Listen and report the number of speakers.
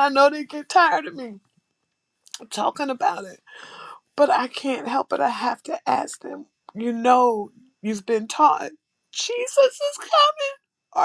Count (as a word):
one